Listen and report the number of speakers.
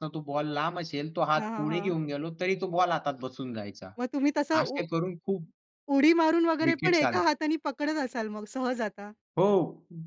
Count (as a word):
two